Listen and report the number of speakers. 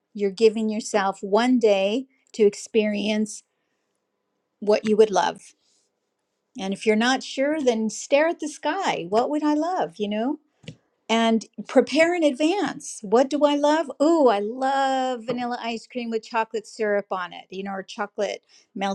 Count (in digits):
1